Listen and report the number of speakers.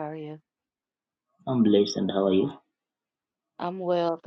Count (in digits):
2